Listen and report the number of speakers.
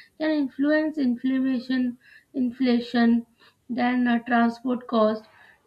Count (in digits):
1